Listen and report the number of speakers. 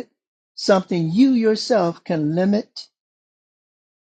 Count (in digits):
1